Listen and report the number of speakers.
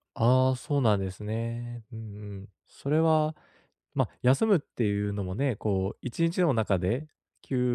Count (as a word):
one